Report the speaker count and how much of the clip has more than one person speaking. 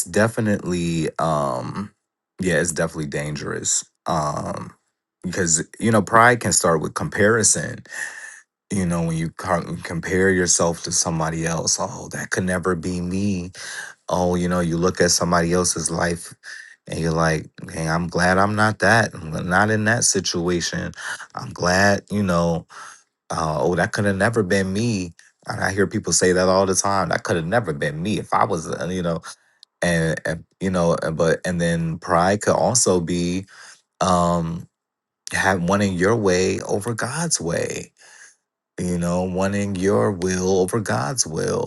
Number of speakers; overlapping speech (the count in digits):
1, no overlap